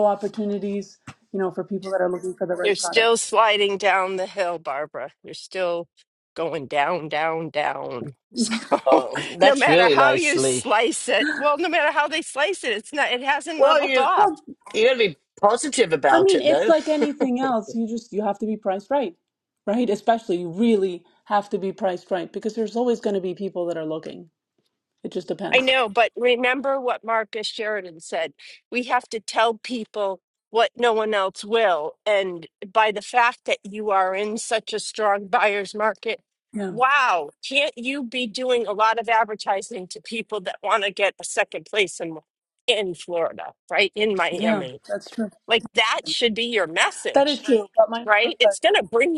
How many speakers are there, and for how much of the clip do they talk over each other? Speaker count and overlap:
three, about 9%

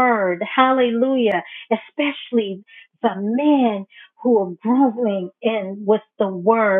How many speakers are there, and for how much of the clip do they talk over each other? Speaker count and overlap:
one, no overlap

